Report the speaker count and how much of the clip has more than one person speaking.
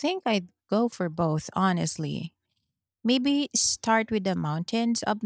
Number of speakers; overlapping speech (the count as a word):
one, no overlap